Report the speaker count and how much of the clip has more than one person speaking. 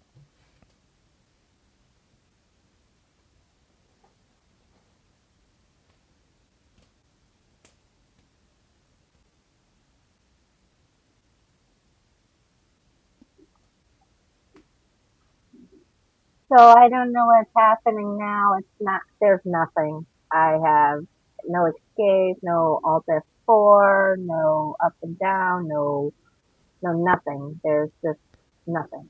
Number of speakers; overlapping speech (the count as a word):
one, no overlap